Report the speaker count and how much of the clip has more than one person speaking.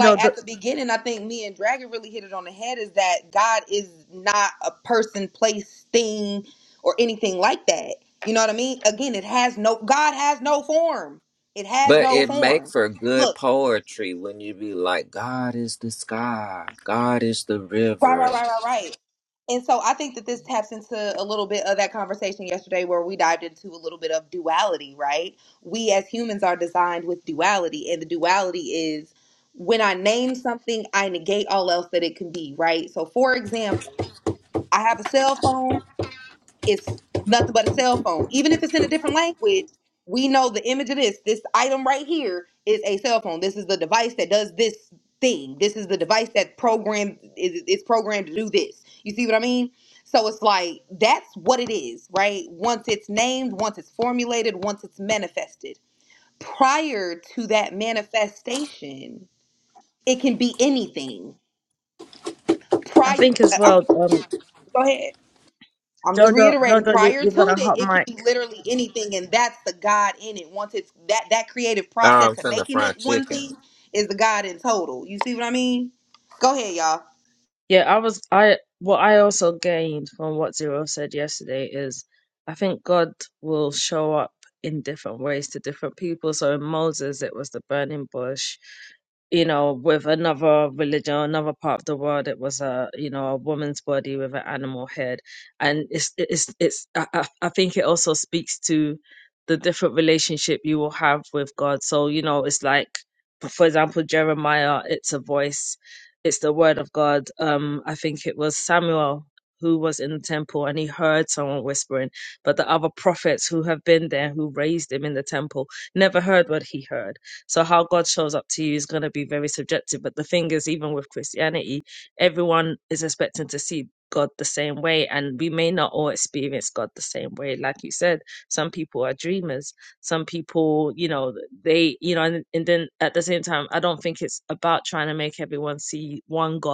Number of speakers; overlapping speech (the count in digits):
3, about 4%